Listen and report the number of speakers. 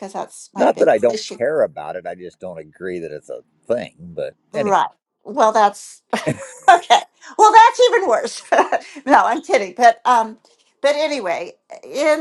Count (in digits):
2